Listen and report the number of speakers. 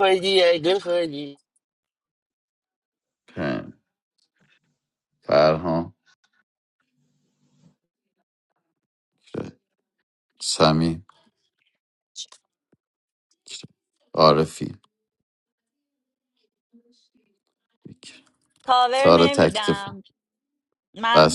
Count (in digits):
3